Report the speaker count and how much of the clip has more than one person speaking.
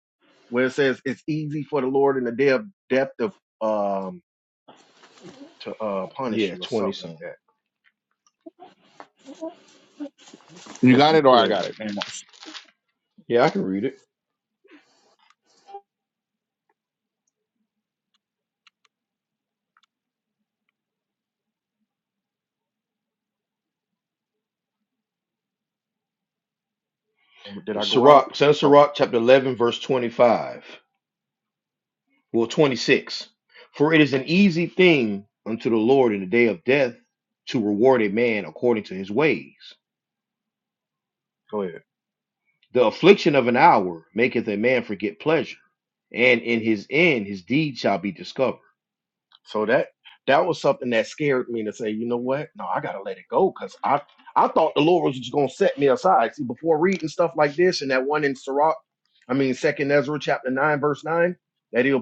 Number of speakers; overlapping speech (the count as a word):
three, about 3%